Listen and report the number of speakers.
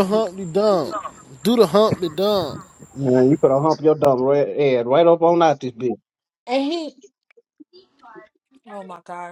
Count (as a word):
three